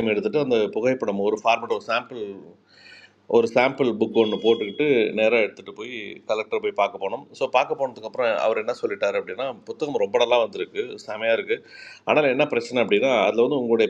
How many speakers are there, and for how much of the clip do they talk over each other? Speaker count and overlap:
one, no overlap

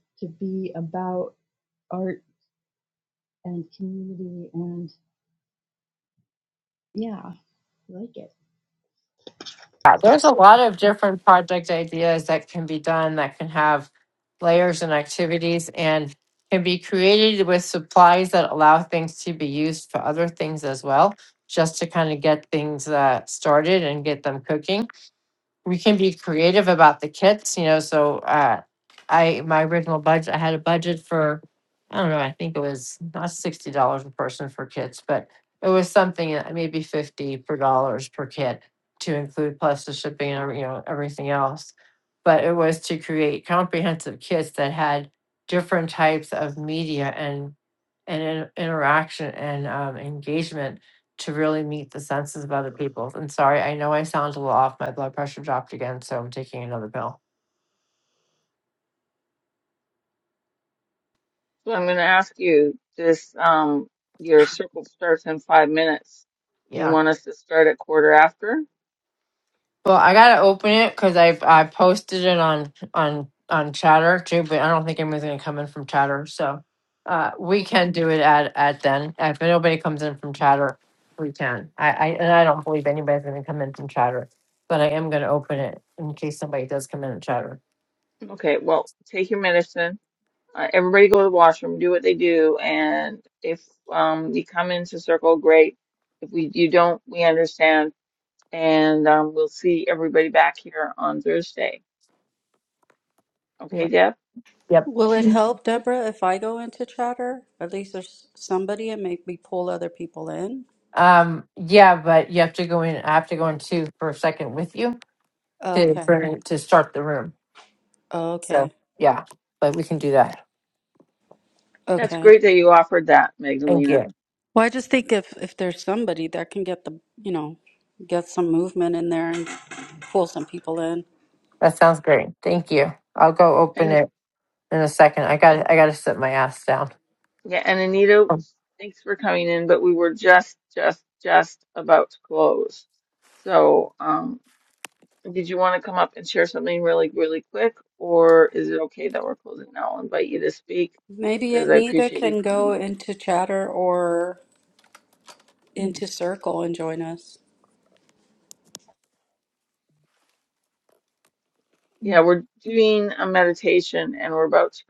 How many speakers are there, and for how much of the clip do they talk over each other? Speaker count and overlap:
four, about 2%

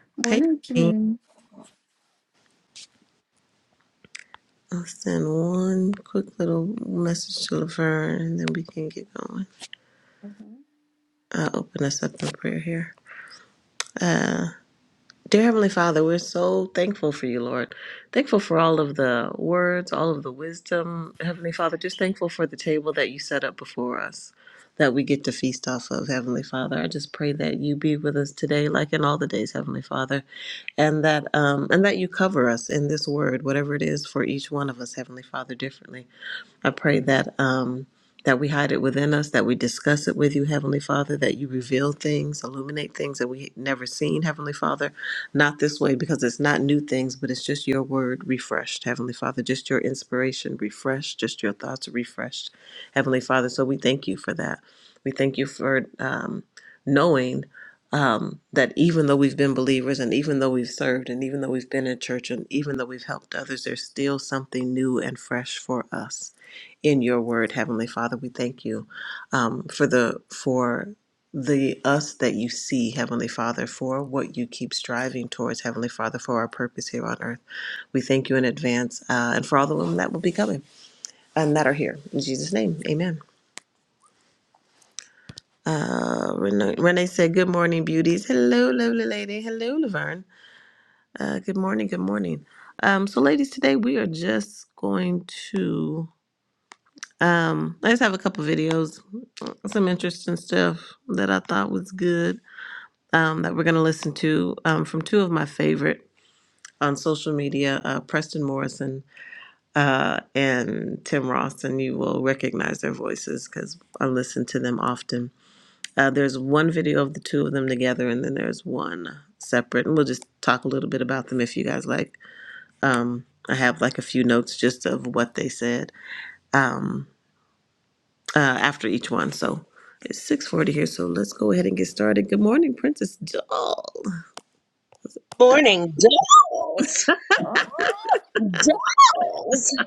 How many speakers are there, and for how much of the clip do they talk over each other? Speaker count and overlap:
three, about 1%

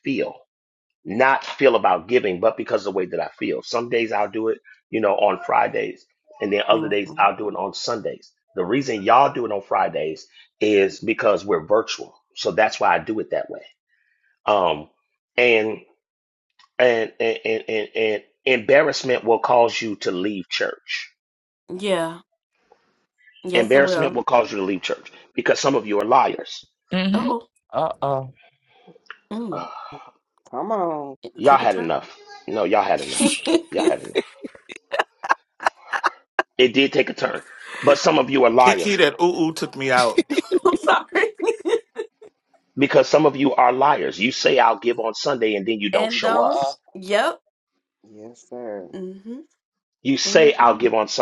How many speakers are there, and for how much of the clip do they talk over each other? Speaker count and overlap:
five, about 8%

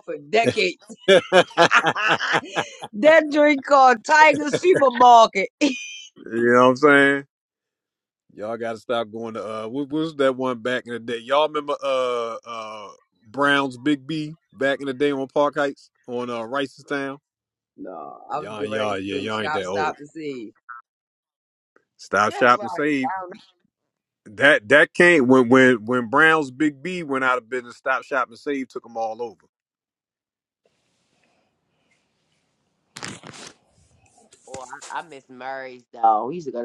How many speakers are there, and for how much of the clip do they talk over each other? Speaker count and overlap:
three, about 6%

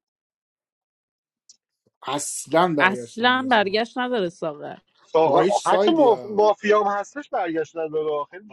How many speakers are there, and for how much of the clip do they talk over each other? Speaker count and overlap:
three, about 24%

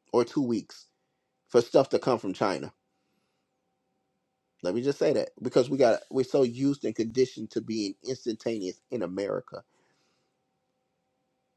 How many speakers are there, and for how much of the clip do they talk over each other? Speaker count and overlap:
one, no overlap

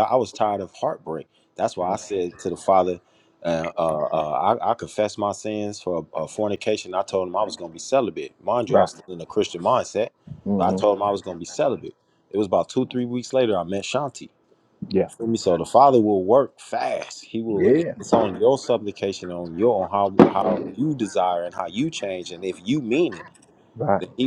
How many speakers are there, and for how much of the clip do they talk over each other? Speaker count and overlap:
two, about 4%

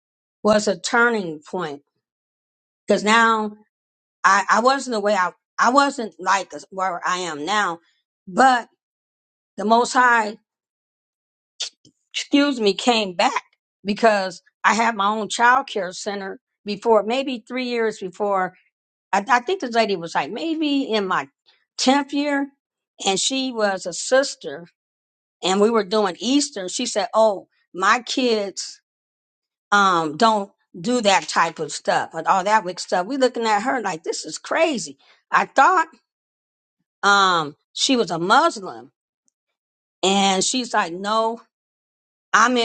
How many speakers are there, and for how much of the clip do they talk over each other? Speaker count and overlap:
one, no overlap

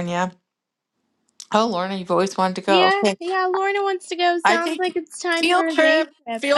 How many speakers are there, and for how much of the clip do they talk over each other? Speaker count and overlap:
two, about 28%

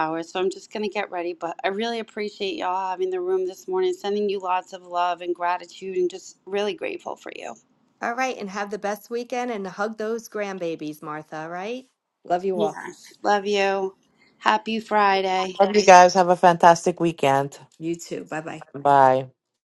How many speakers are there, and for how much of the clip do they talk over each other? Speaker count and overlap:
three, about 1%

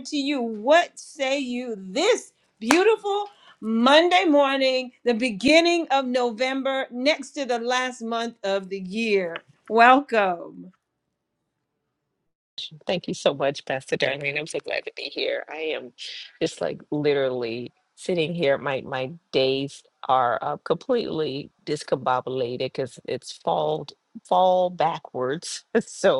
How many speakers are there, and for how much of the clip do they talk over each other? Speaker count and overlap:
two, no overlap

